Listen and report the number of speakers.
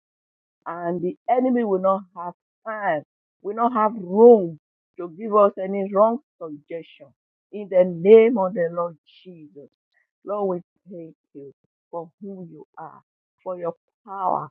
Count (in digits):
1